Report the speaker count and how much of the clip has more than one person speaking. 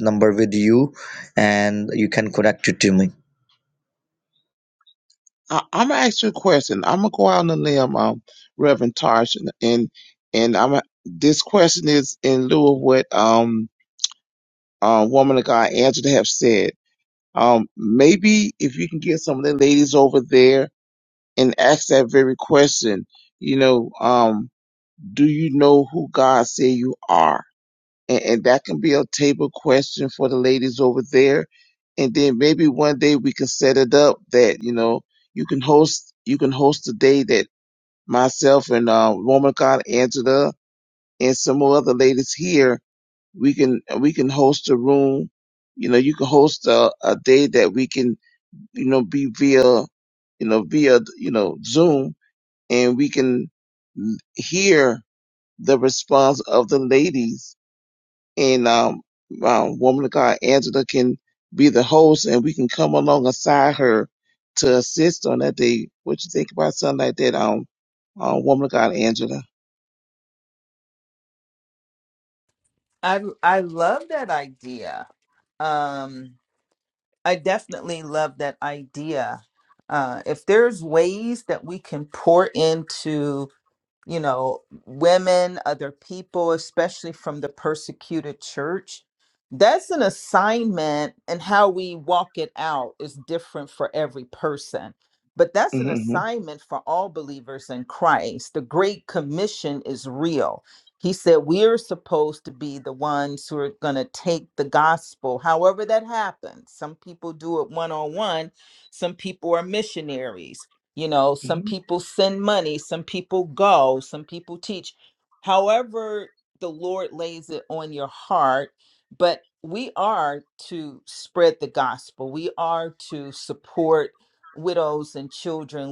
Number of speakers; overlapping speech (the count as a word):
three, about 1%